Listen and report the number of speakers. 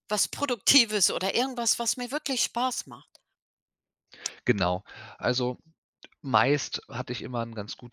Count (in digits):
2